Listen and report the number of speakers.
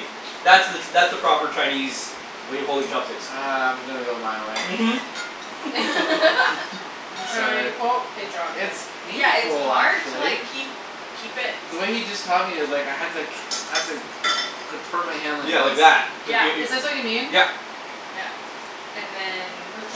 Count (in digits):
4